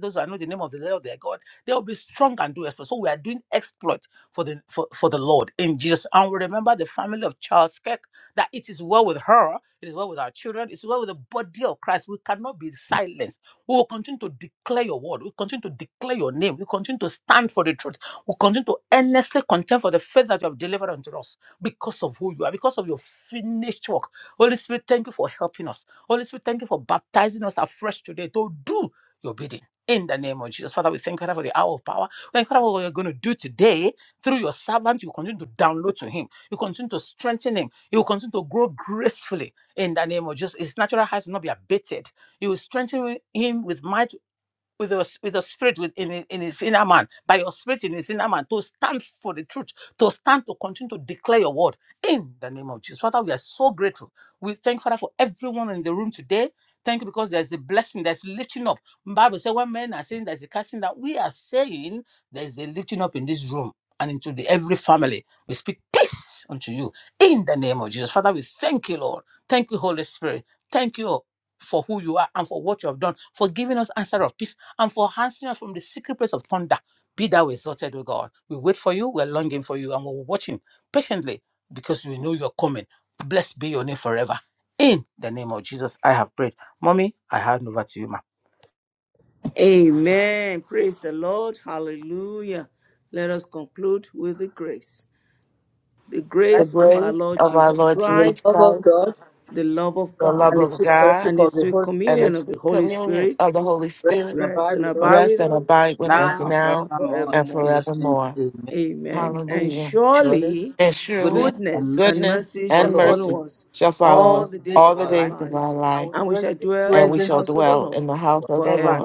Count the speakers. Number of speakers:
three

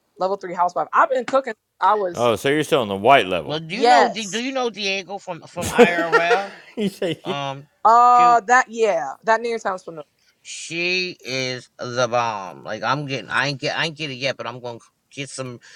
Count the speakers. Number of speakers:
three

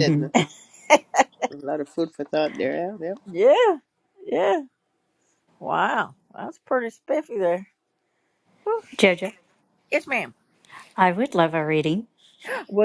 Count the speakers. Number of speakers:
three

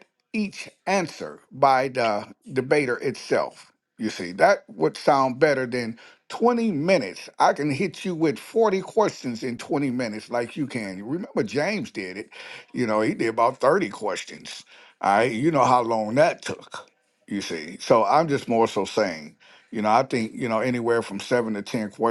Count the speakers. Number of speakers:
one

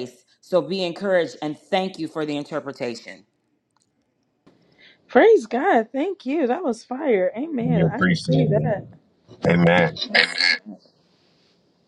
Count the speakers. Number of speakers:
three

